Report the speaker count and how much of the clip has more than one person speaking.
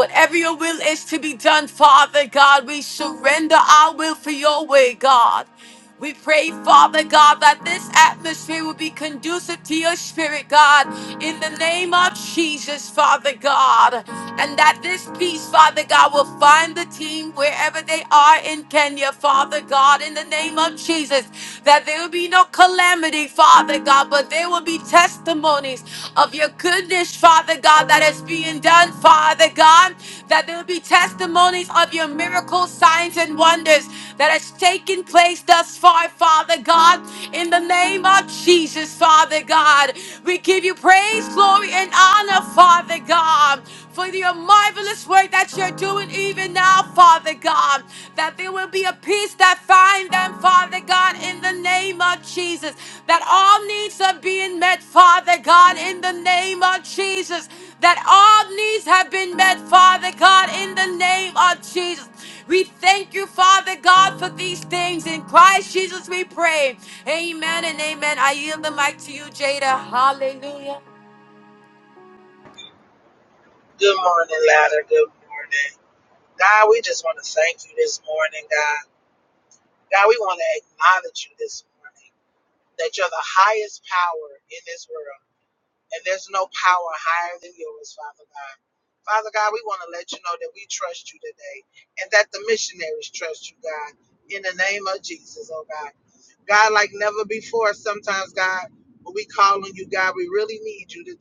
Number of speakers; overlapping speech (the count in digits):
2, no overlap